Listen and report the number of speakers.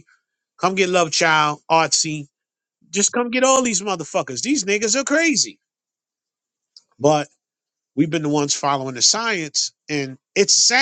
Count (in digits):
1